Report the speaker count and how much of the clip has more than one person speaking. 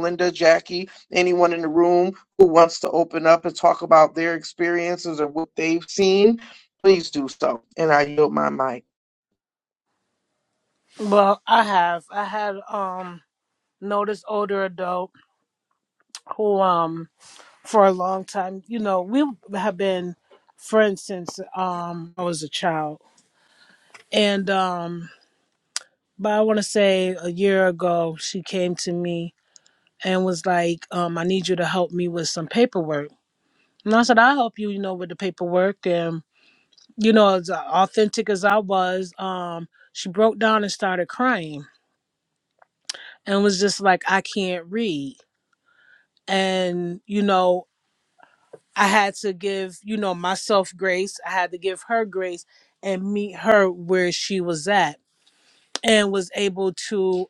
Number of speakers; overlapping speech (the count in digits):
2, no overlap